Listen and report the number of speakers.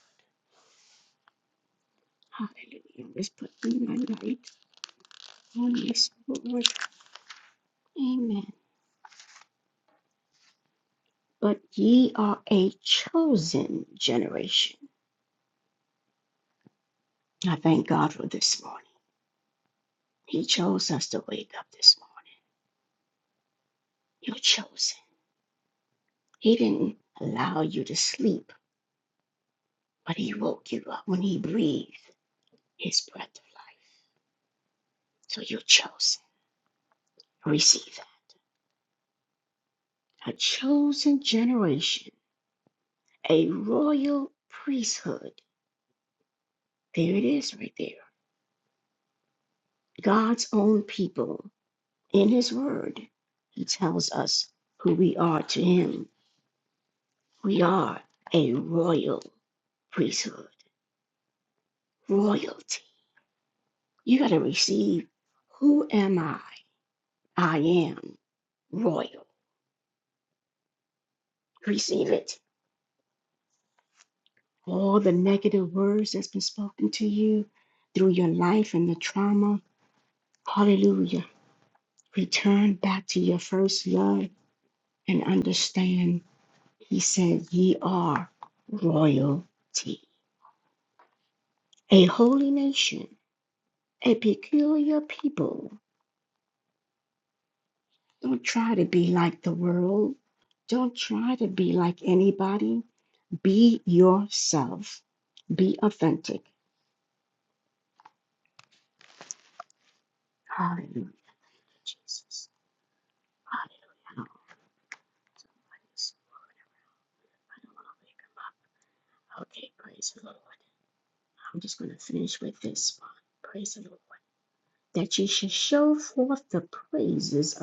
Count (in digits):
1